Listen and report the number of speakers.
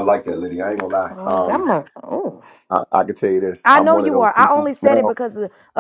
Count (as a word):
three